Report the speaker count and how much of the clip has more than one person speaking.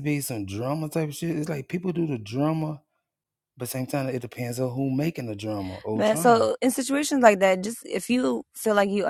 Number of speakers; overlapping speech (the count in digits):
2, about 6%